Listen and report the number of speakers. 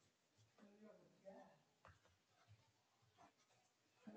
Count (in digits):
0